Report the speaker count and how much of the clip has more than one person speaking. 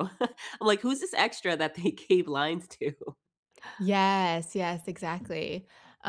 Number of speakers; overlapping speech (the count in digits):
2, no overlap